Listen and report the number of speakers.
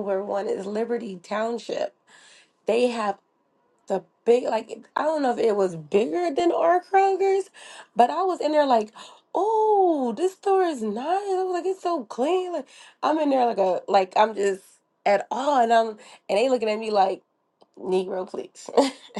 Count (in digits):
1